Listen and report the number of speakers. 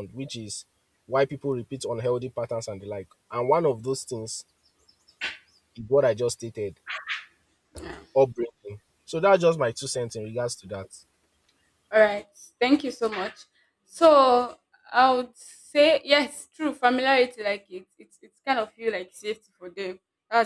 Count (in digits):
2